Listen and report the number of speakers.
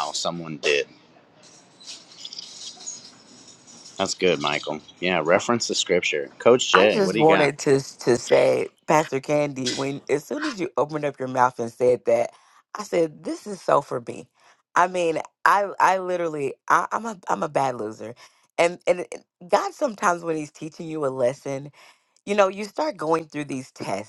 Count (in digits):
2